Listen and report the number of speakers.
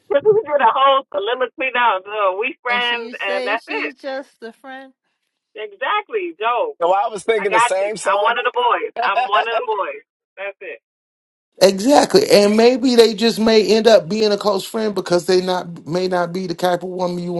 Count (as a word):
four